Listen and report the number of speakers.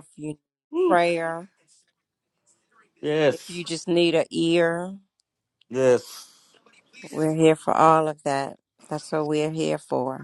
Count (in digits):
2